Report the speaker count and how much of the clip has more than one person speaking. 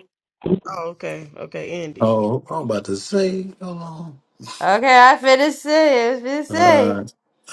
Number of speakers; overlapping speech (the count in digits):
3, about 8%